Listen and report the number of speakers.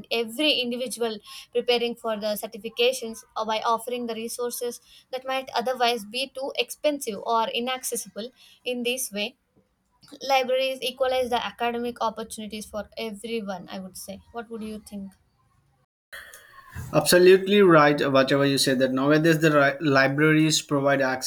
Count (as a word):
two